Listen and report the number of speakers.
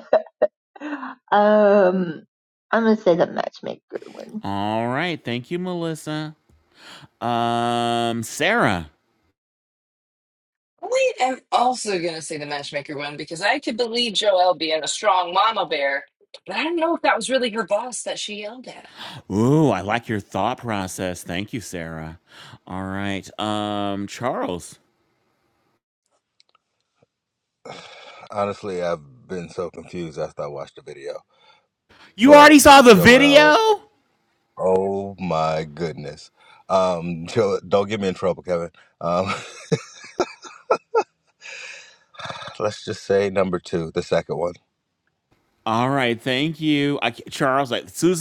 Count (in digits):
4